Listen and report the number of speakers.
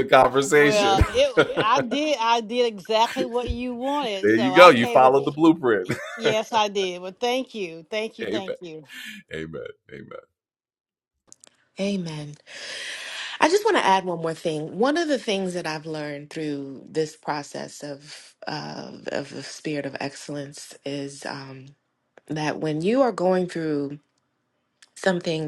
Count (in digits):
3